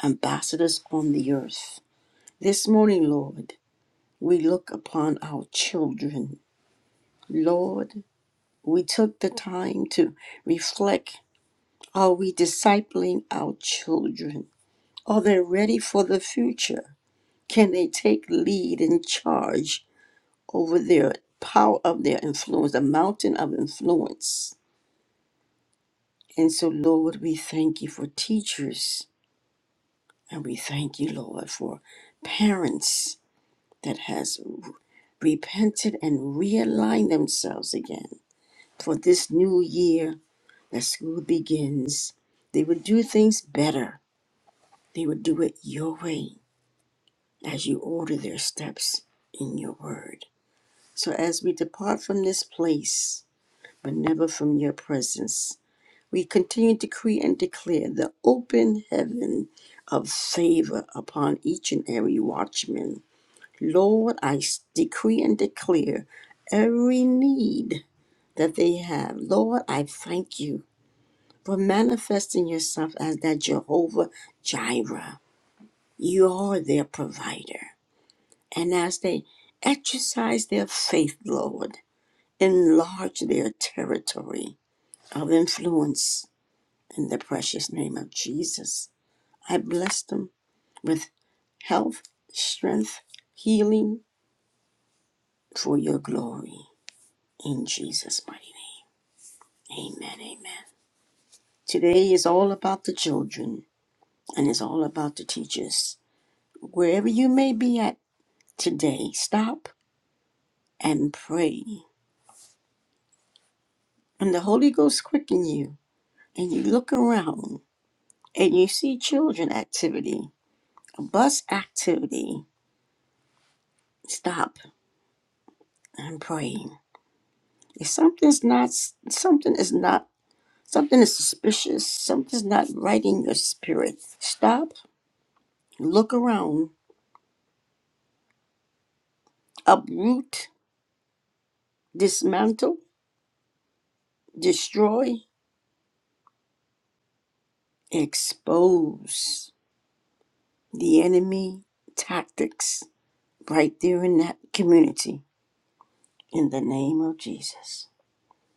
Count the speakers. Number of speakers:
1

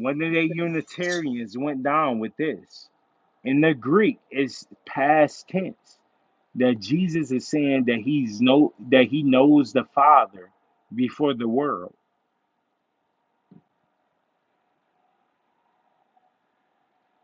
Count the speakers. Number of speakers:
1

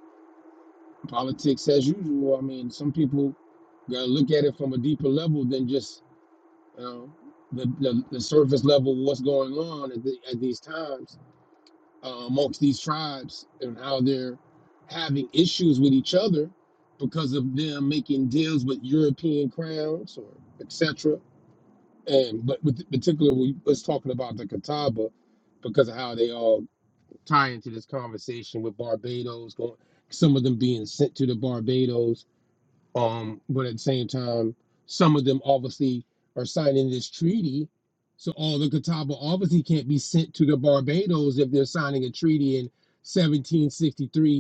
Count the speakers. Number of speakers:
1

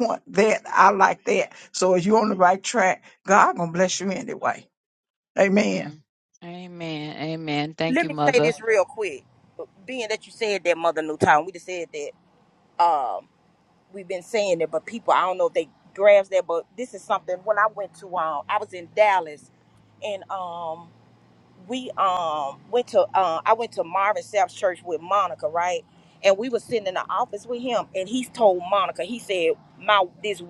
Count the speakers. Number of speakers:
3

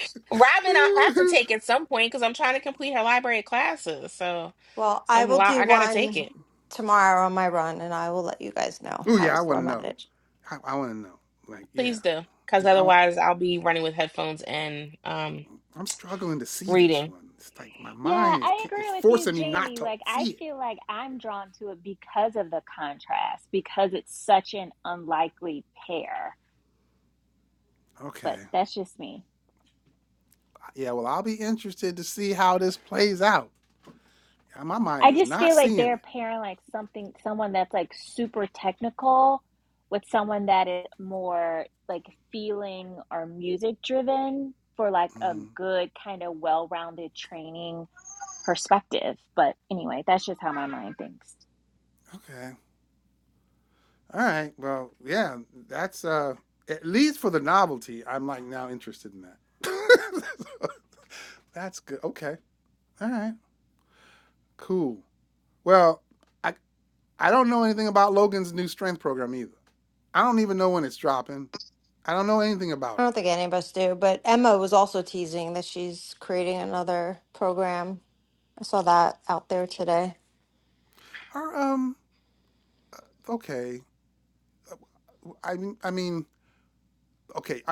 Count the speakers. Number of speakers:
4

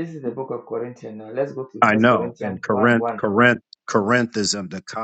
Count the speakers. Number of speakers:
2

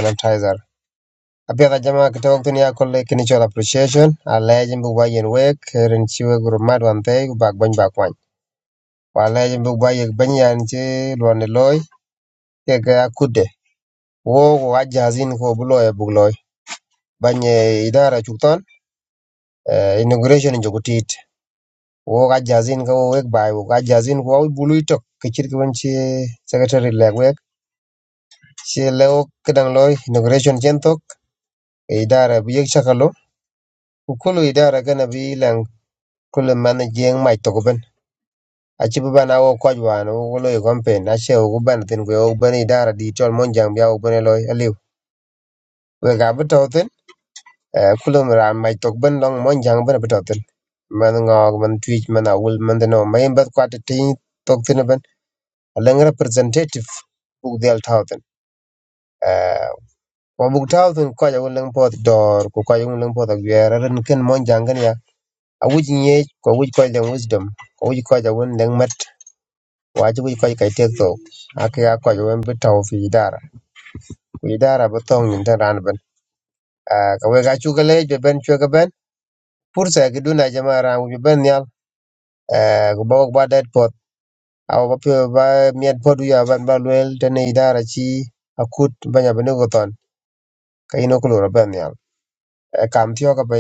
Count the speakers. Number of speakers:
1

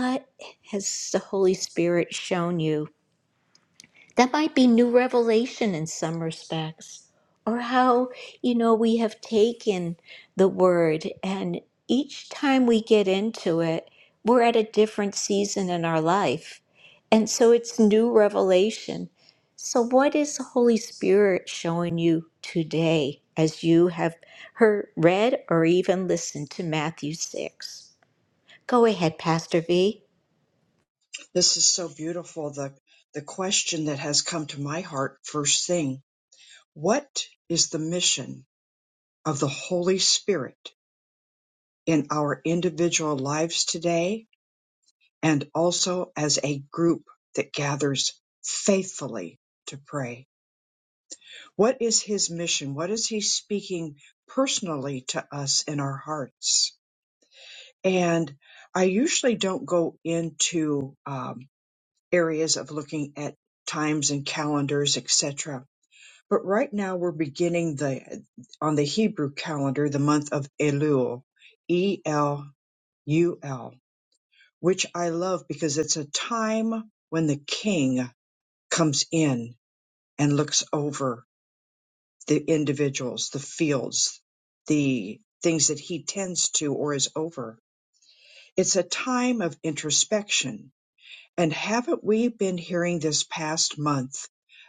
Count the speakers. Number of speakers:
2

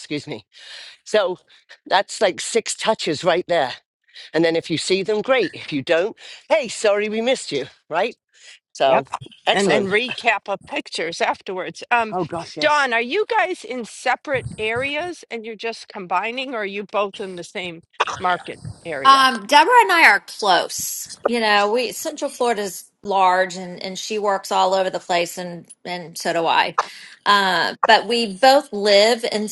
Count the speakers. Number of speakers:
3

